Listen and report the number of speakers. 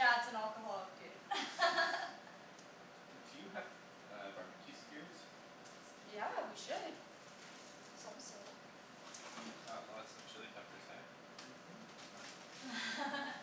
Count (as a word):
two